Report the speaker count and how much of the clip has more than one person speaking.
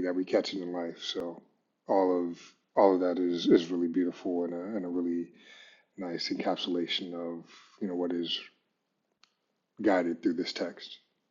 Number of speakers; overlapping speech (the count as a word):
one, no overlap